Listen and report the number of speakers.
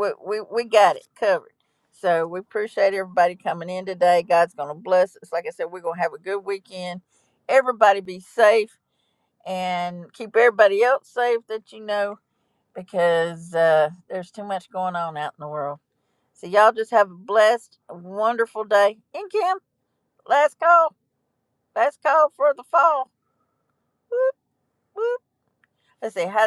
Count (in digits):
1